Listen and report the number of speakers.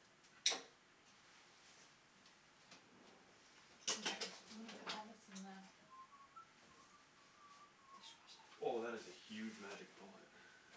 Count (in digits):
2